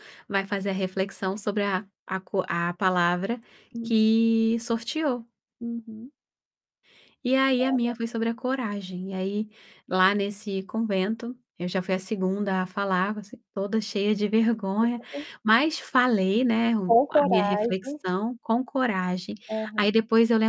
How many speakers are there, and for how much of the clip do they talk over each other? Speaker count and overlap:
two, about 8%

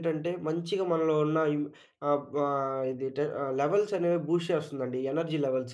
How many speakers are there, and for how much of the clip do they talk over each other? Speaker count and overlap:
one, no overlap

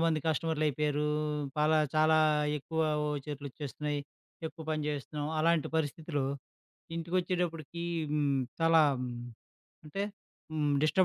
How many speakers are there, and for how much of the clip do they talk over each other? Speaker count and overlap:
one, no overlap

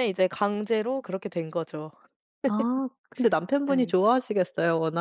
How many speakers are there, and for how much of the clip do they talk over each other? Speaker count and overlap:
two, about 4%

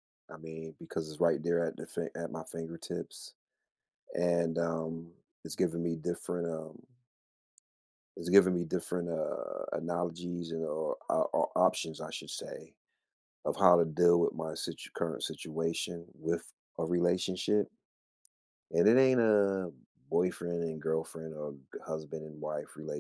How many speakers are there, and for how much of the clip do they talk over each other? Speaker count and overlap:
one, no overlap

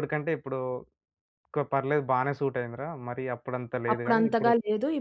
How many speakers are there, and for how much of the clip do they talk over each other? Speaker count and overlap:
two, about 14%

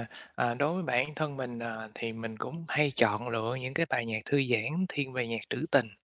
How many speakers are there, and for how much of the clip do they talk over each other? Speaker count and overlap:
one, no overlap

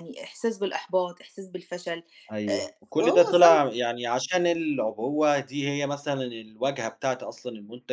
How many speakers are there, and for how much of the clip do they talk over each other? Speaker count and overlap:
two, about 11%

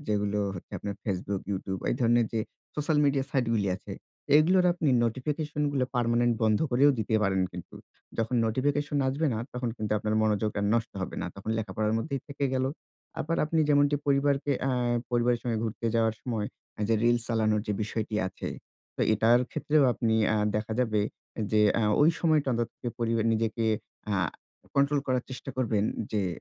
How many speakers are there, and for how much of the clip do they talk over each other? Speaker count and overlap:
one, no overlap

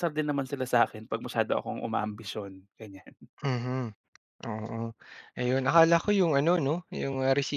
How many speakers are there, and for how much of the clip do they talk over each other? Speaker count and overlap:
two, no overlap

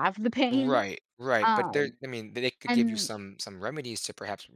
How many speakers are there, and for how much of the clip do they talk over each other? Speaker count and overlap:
two, about 26%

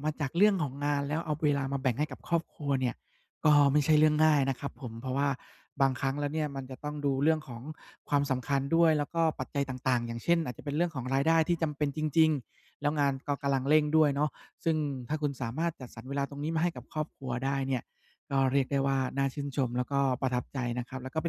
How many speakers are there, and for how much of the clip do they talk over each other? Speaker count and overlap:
one, no overlap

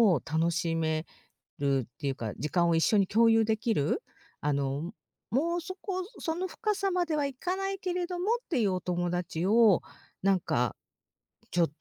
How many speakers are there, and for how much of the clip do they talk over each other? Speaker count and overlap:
one, no overlap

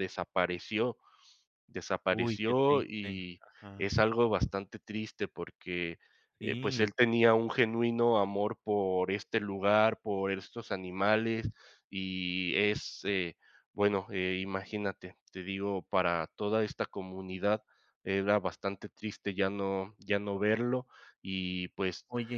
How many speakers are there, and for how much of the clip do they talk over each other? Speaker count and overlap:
two, about 7%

